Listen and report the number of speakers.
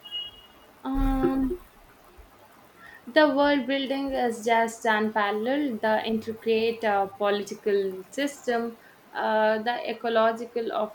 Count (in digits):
1